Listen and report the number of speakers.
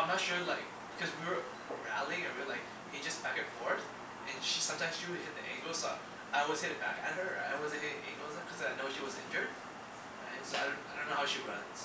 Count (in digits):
1